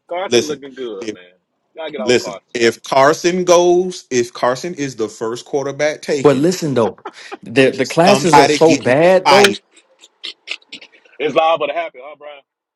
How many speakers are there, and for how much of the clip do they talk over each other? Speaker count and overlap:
three, about 23%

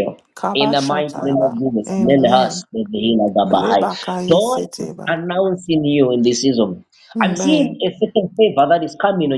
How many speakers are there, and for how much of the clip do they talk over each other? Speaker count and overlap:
two, about 43%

